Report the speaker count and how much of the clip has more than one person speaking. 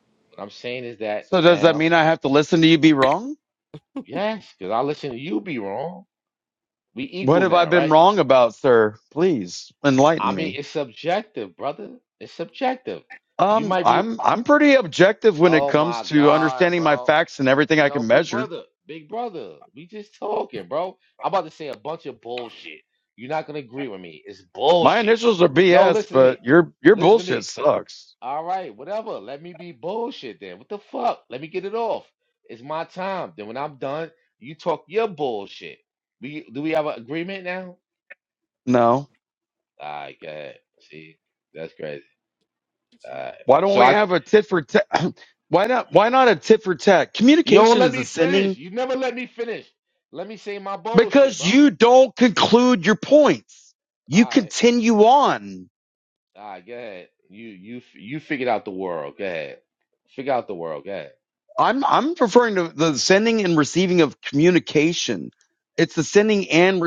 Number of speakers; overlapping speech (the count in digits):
2, about 13%